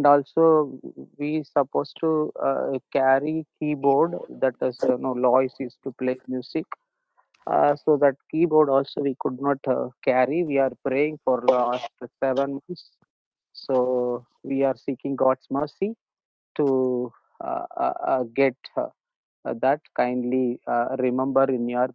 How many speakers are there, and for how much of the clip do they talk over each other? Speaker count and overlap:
one, no overlap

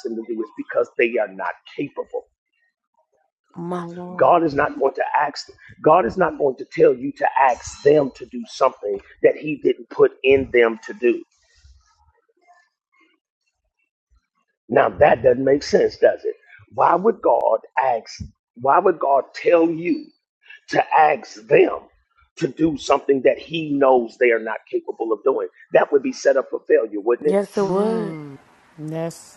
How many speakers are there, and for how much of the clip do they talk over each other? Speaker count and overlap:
three, about 3%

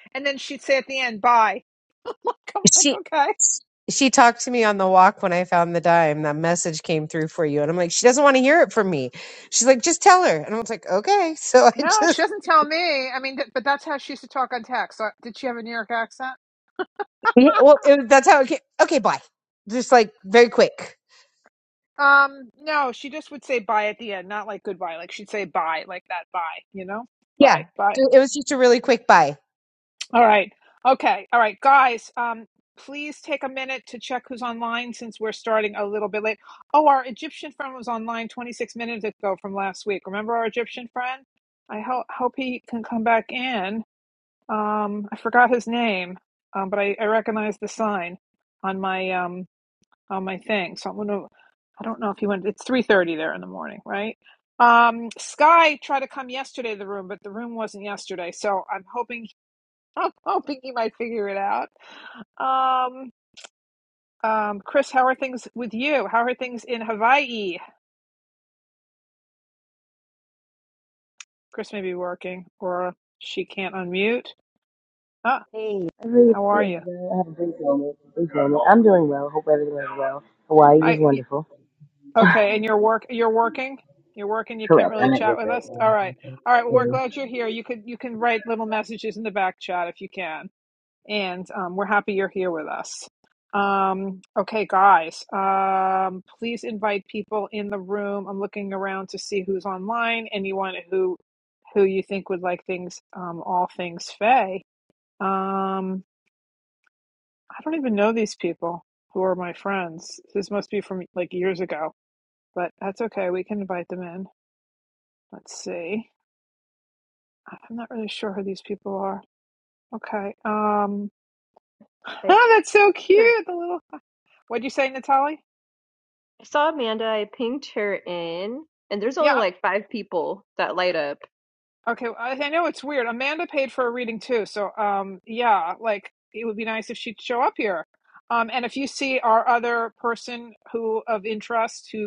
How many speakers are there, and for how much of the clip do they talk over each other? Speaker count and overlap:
four, about 3%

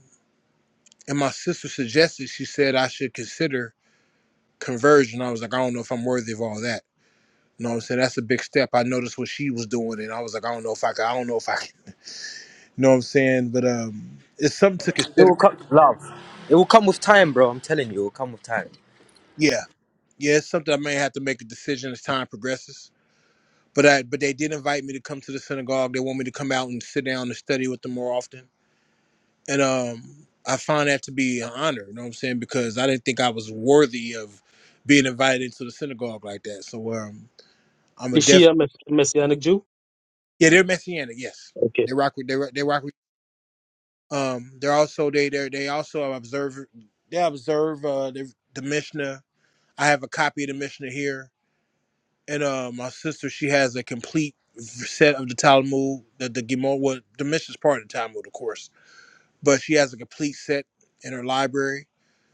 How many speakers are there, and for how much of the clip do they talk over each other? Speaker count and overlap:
three, about 1%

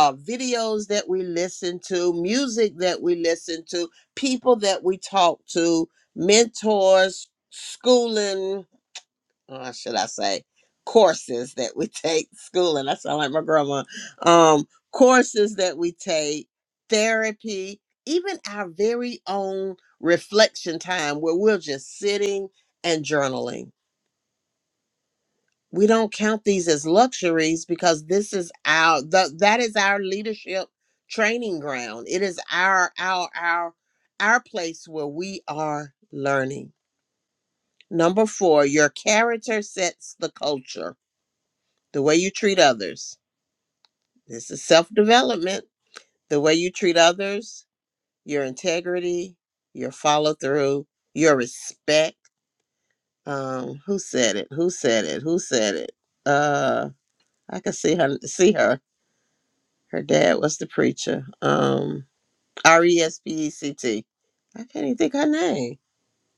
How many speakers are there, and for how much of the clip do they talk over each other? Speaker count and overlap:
one, no overlap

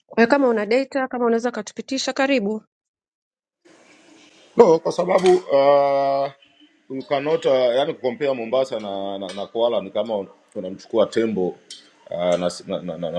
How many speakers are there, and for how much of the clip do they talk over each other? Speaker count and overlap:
two, no overlap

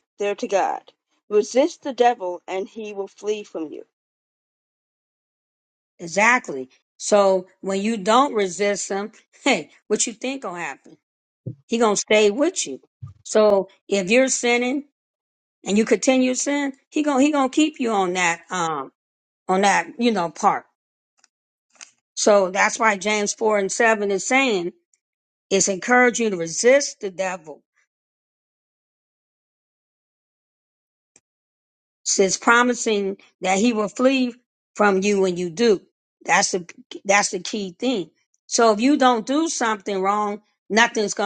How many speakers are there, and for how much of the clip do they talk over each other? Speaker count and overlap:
two, no overlap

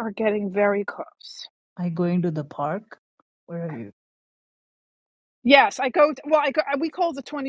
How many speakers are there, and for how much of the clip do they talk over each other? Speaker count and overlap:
two, no overlap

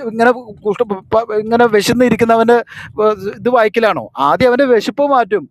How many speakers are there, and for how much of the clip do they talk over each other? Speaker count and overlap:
one, no overlap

